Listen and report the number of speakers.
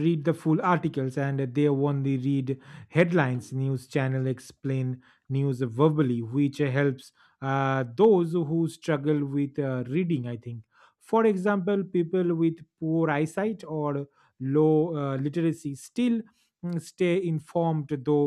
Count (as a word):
one